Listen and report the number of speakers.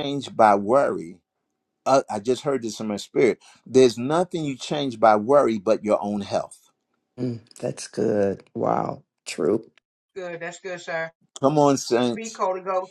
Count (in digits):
3